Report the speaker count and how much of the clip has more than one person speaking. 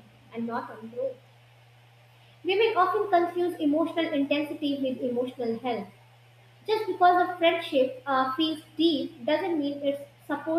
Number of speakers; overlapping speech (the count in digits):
1, no overlap